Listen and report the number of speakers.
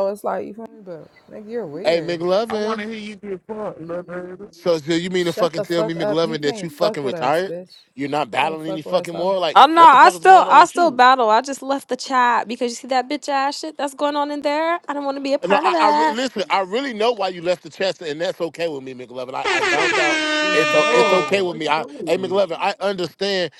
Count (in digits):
4